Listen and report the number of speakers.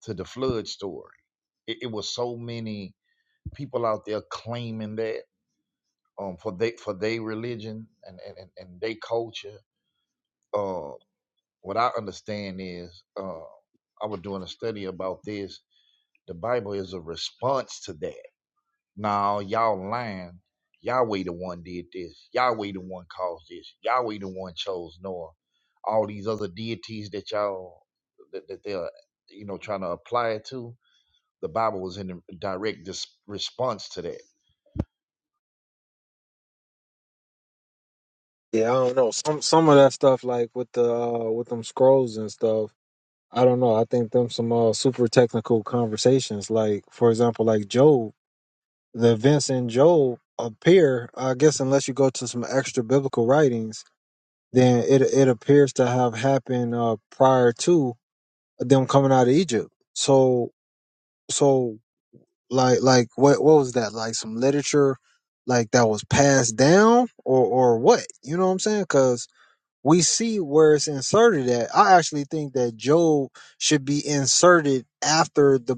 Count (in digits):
2